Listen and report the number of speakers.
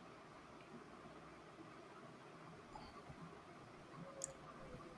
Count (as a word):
zero